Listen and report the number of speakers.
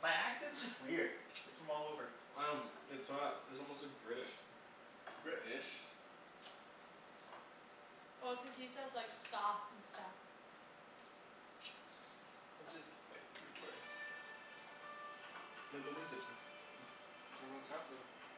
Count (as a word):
four